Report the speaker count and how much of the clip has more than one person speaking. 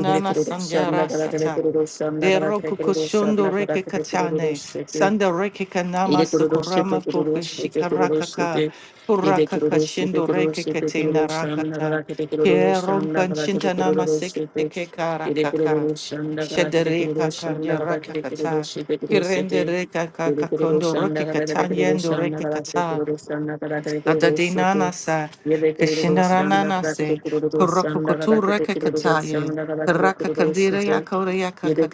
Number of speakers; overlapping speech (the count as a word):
two, about 69%